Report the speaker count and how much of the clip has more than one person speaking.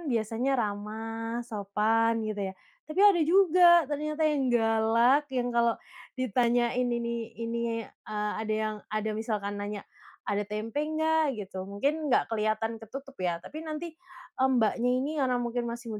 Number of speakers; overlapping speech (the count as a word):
one, no overlap